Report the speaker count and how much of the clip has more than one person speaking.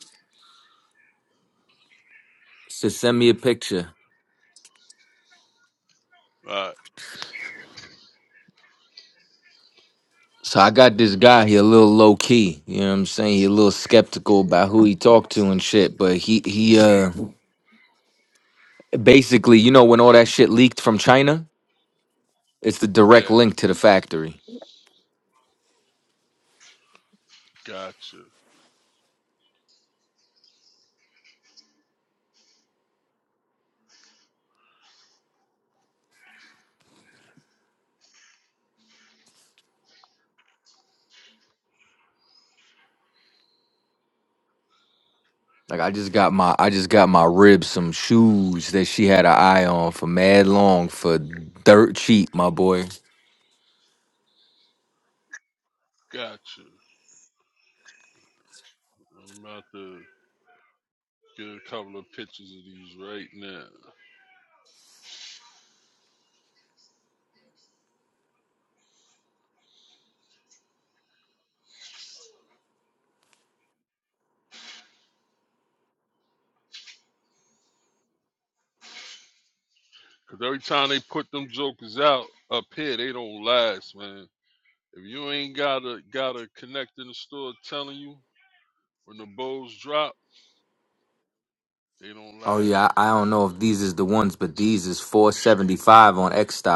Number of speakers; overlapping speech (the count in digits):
2, about 1%